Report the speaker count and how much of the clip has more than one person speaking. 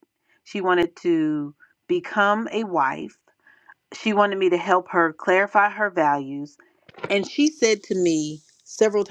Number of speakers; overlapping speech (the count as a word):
one, no overlap